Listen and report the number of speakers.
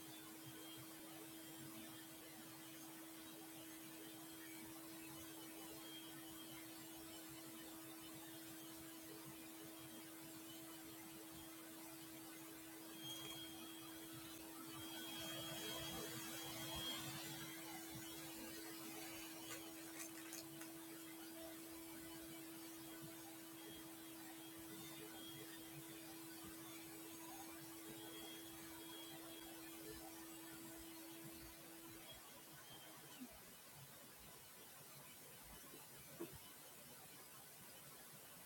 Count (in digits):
0